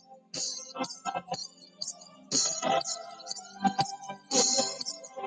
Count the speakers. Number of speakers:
zero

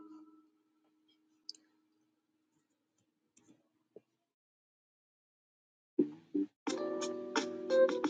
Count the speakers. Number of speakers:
zero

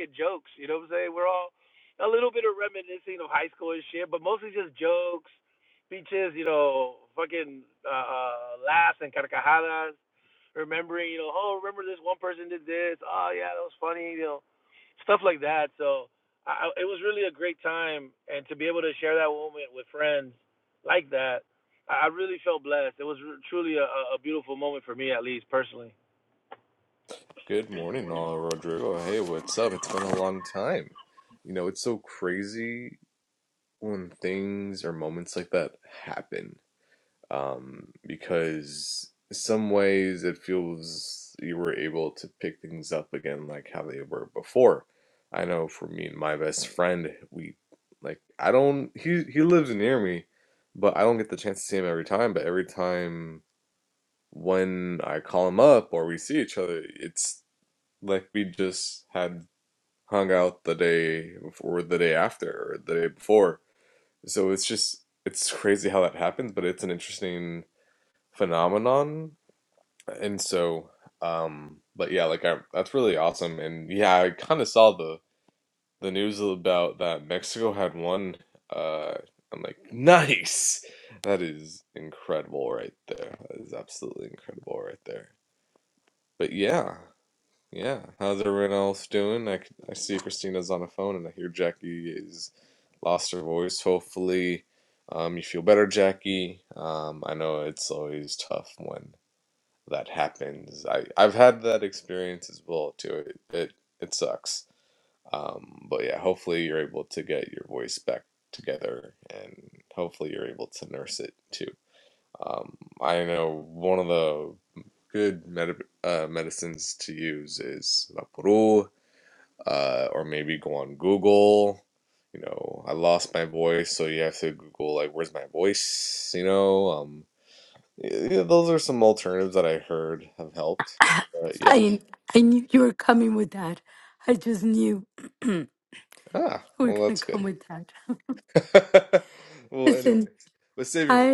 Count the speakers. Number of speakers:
three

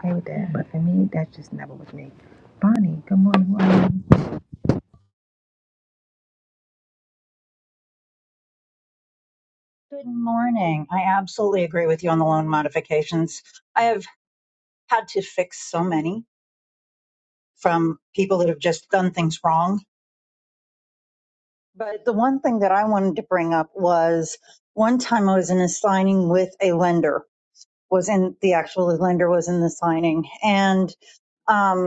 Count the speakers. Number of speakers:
two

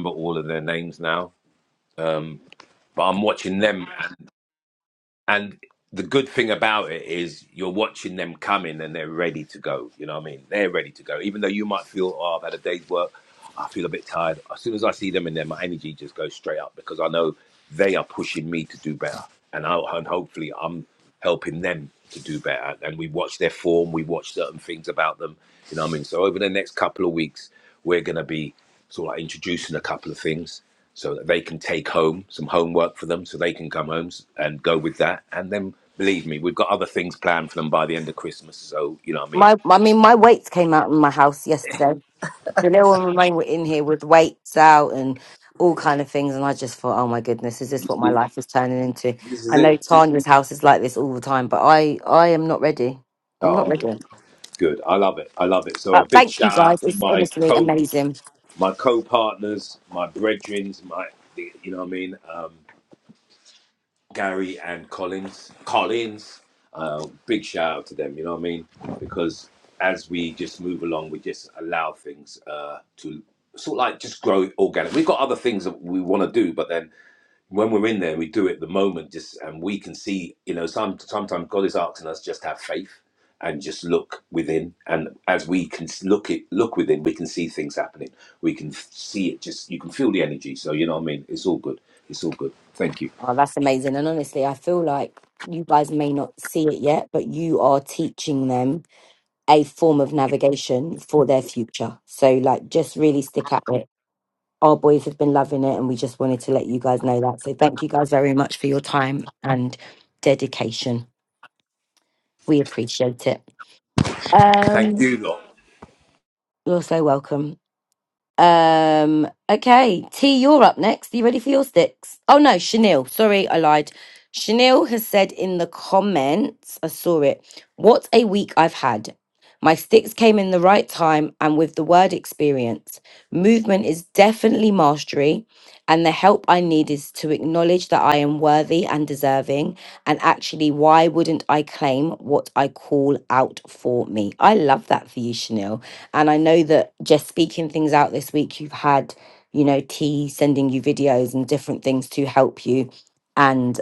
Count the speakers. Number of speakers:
two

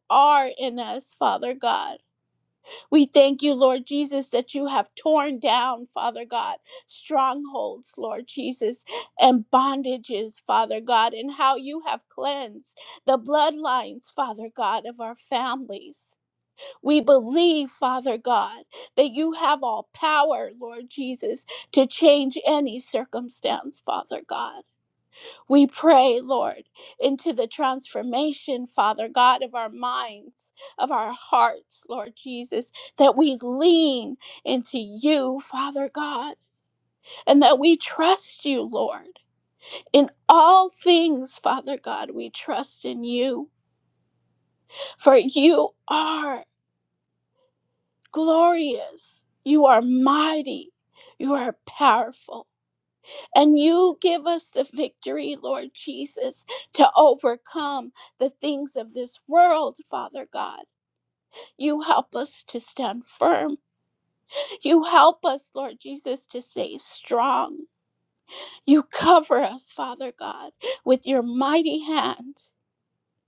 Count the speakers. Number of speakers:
one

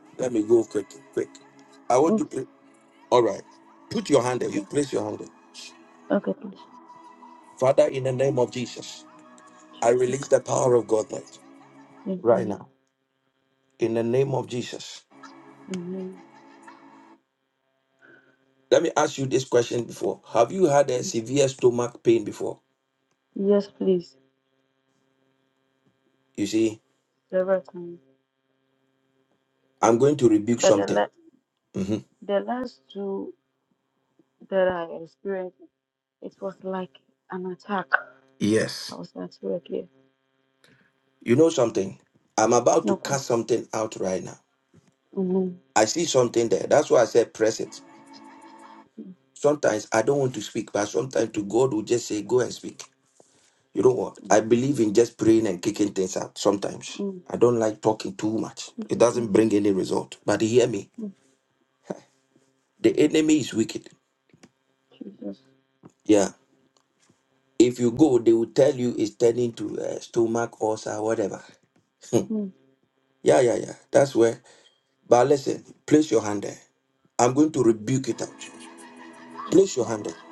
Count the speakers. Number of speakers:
two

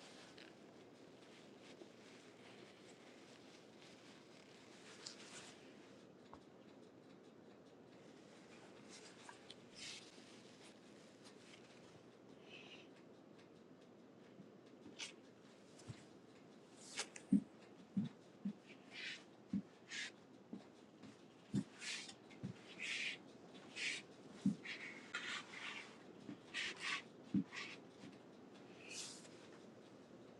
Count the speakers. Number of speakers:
zero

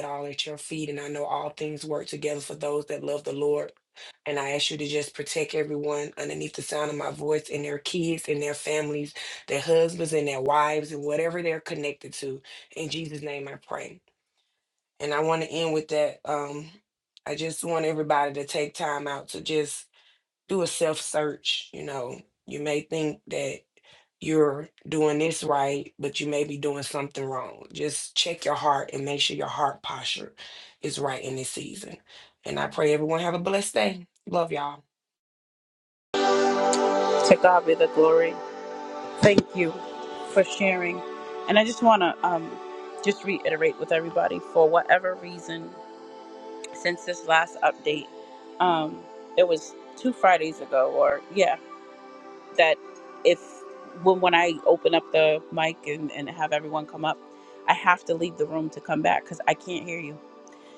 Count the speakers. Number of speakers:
two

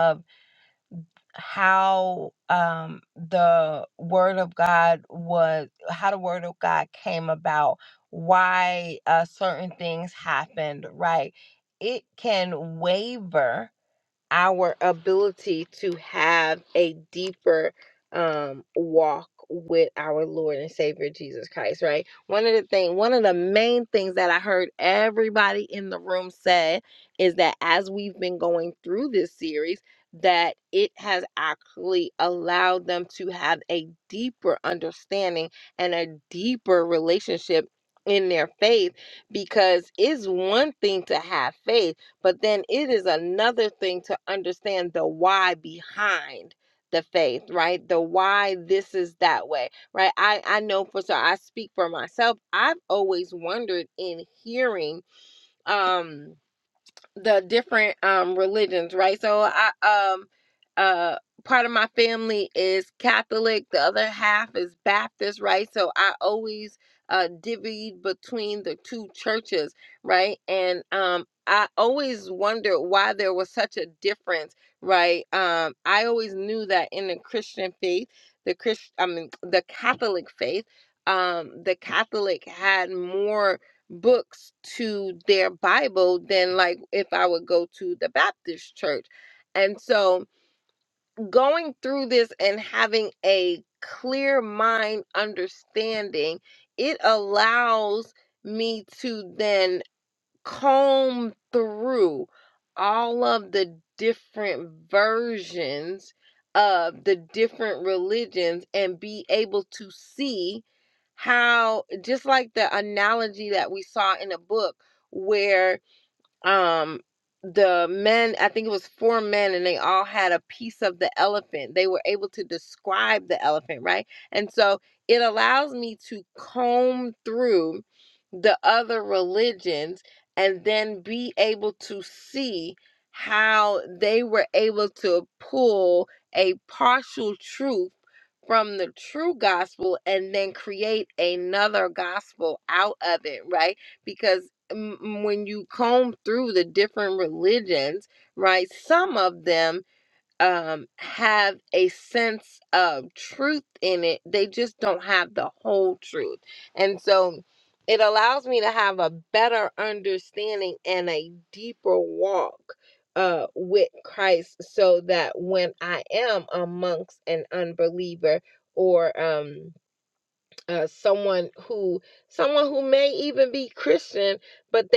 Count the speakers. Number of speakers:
one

